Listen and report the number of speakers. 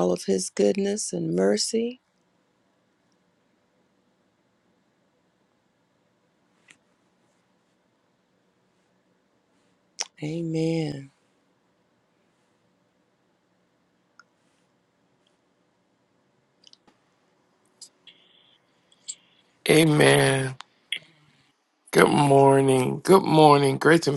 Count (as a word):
two